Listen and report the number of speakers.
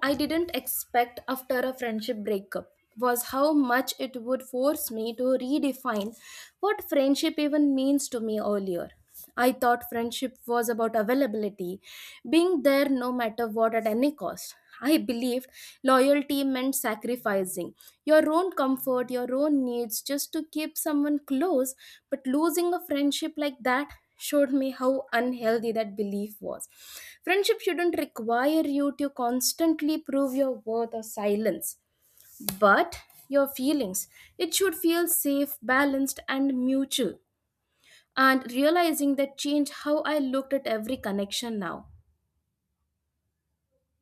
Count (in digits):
1